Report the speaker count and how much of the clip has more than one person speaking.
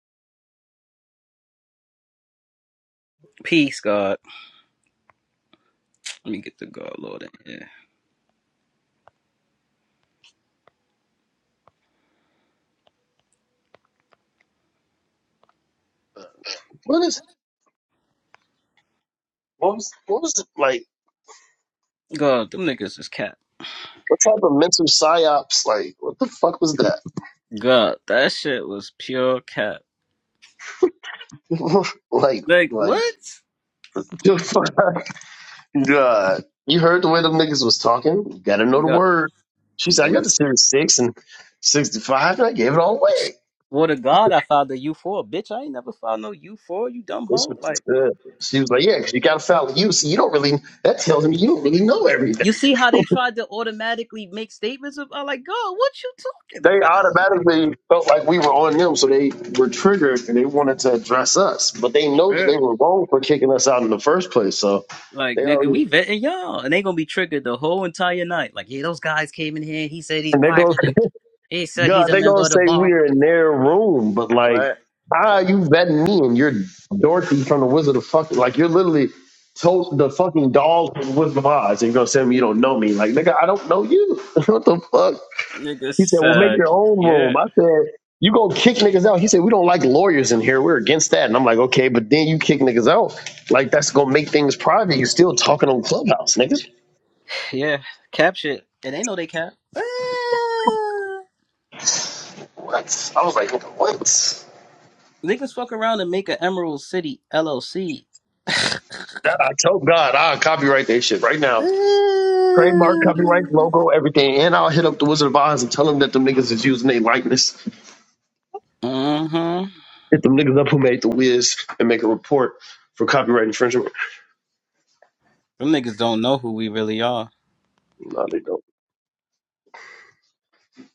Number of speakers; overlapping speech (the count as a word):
two, about 5%